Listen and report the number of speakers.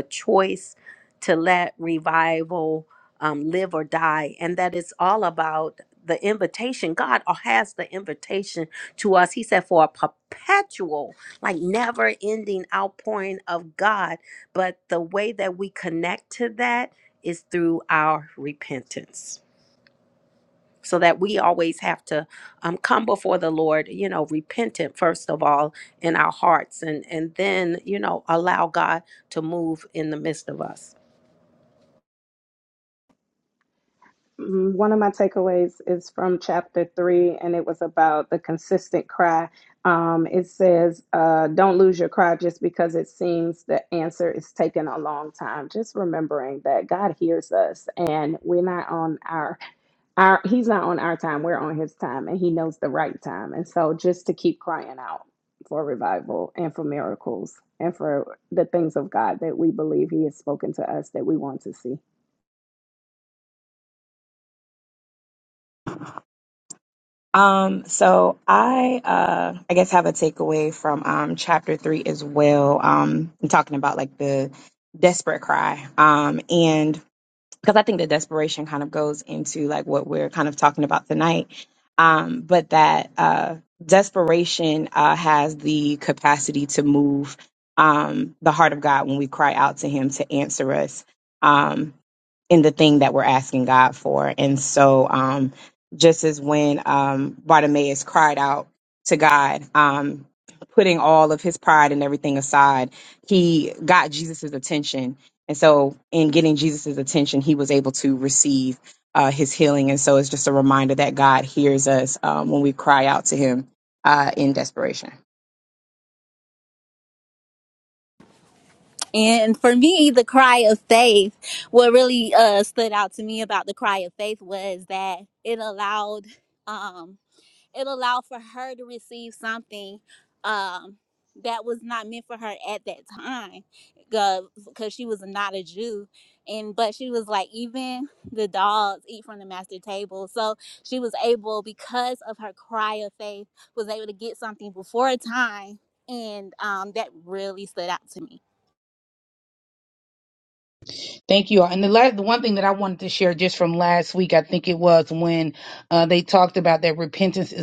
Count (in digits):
5